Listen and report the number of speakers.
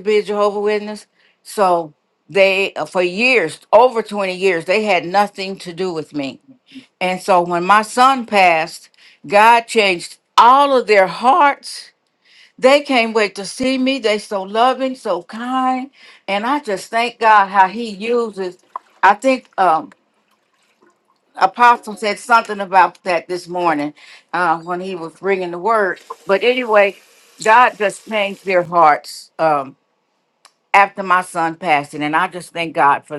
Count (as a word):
one